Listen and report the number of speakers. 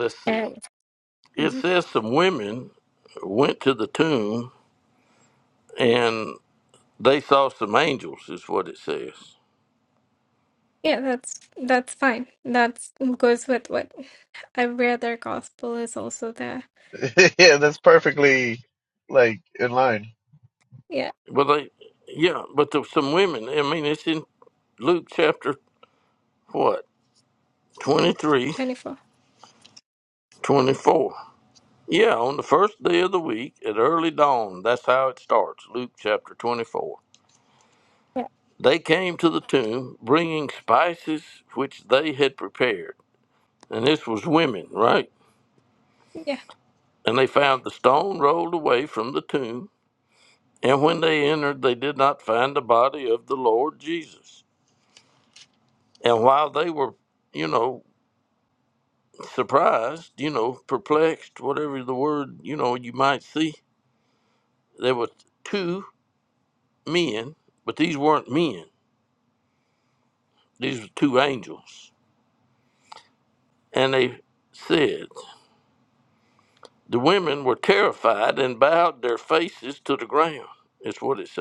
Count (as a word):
three